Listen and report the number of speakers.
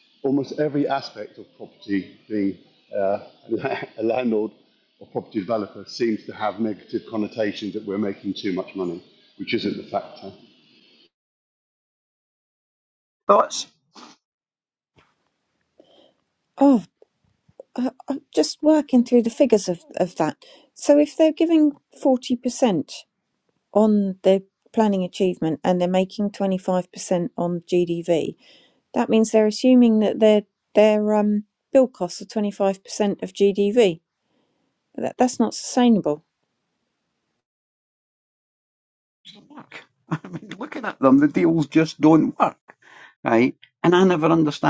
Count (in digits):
3